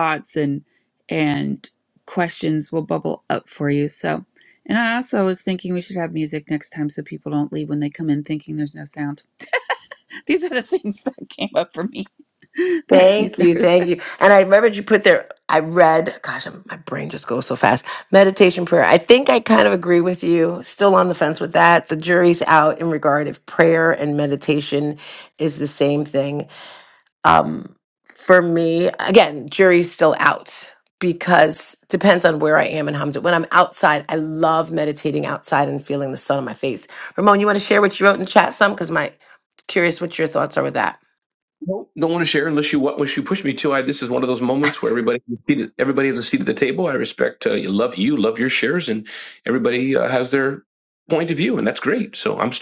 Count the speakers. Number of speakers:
three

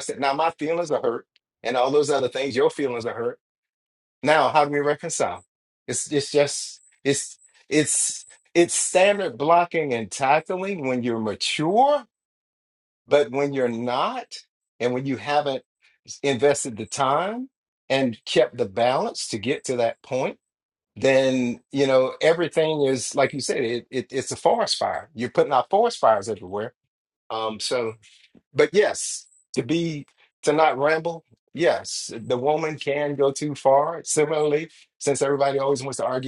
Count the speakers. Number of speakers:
one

